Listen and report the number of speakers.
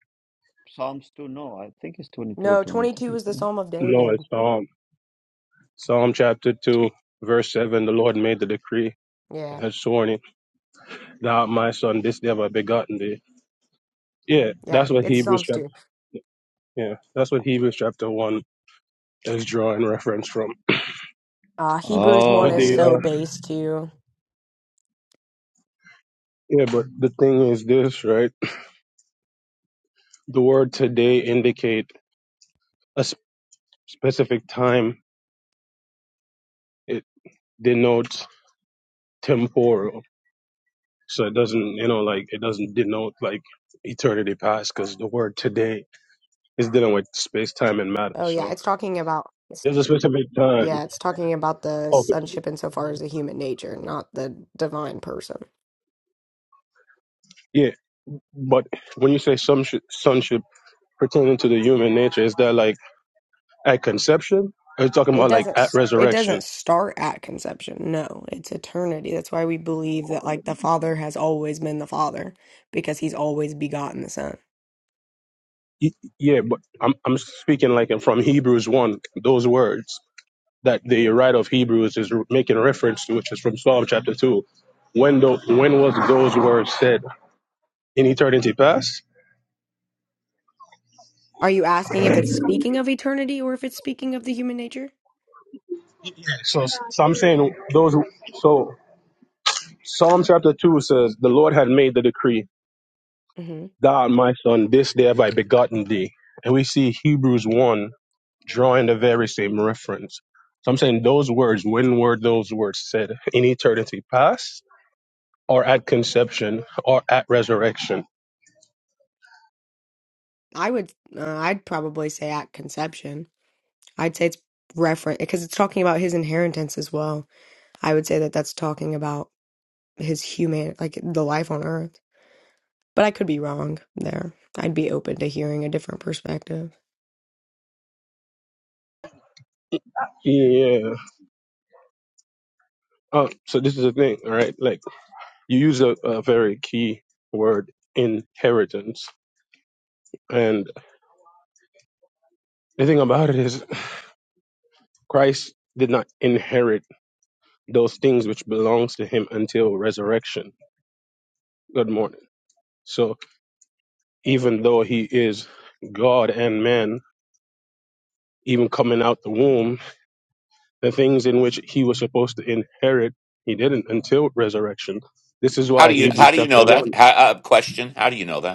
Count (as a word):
four